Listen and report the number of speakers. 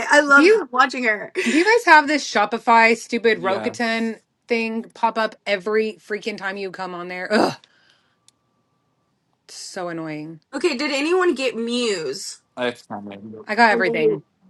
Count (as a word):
three